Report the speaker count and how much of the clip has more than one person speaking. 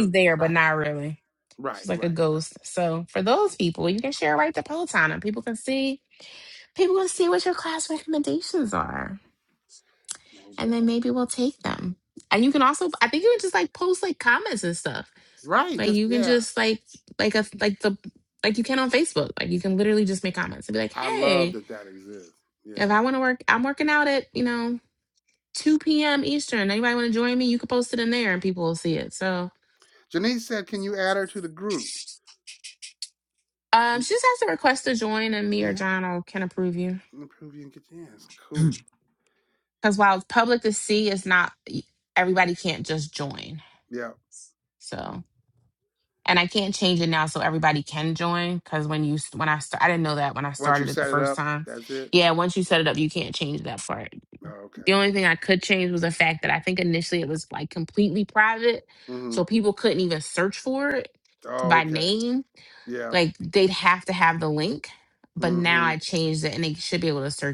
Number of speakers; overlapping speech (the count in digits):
2, about 8%